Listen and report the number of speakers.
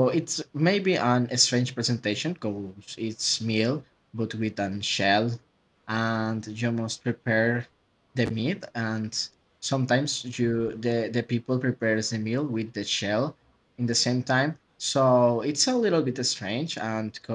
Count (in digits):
1